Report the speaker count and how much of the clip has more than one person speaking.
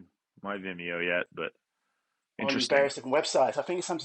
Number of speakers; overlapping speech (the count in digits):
2, about 11%